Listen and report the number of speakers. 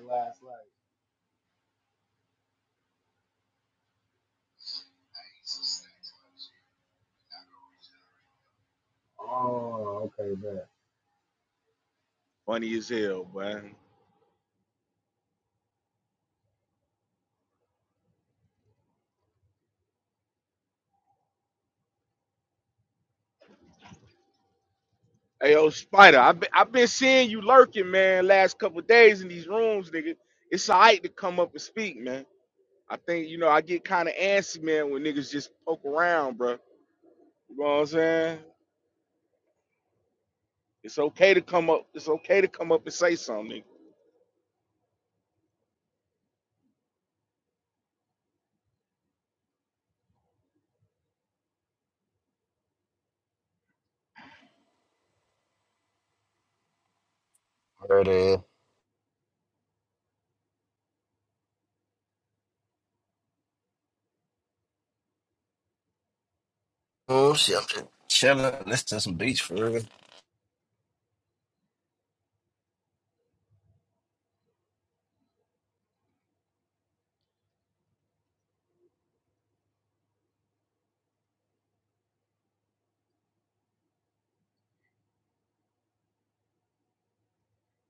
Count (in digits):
3